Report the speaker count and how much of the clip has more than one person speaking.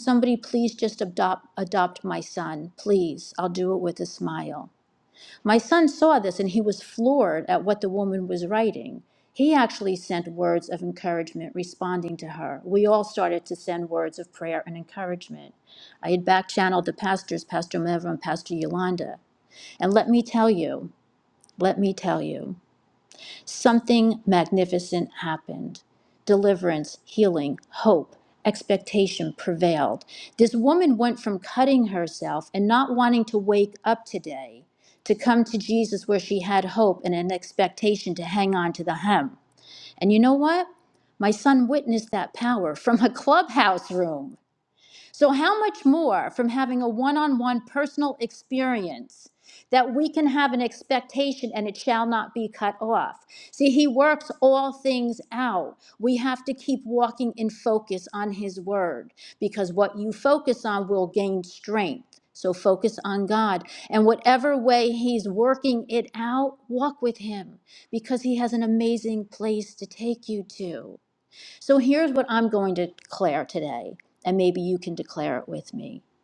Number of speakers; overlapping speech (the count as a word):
one, no overlap